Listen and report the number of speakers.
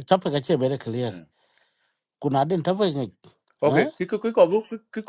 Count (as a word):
two